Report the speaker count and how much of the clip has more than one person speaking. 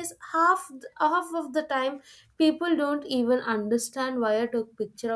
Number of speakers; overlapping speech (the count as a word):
one, no overlap